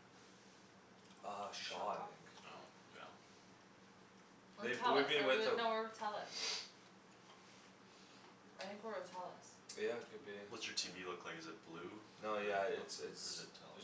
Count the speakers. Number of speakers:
3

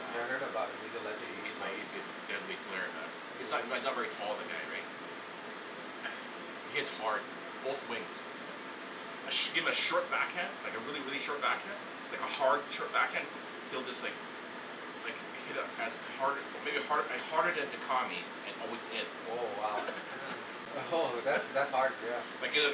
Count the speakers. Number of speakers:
2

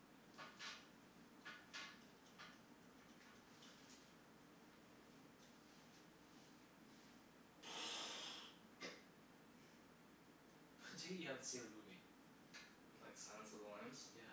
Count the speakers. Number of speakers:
2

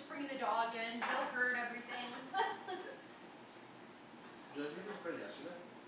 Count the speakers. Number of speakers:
2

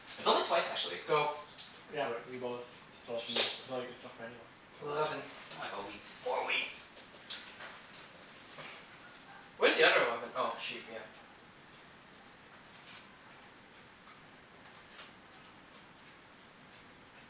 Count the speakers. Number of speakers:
3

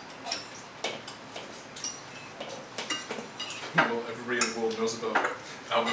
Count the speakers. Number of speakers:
1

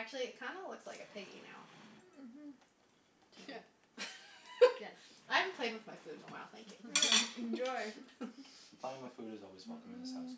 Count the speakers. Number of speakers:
4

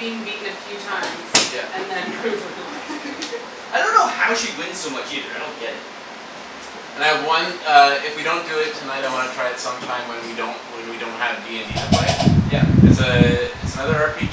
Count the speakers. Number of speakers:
3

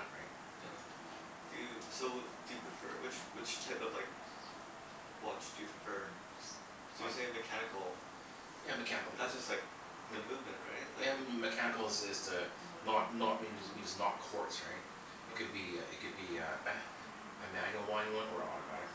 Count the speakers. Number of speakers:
2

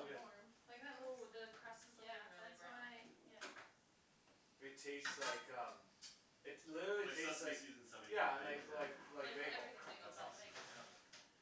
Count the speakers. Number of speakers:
4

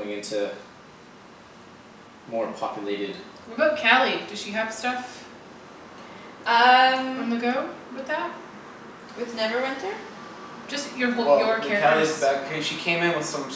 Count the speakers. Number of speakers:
4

